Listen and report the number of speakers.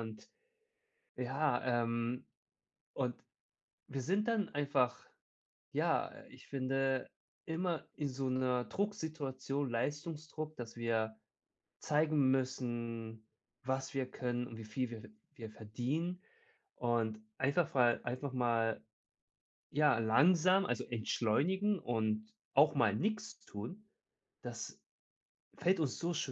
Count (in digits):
1